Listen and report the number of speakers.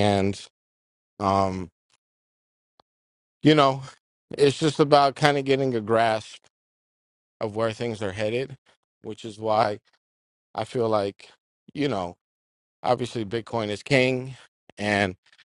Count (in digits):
1